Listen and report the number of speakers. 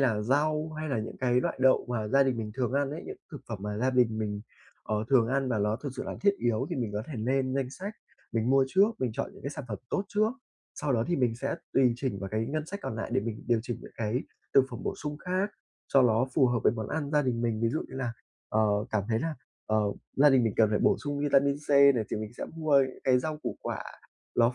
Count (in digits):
1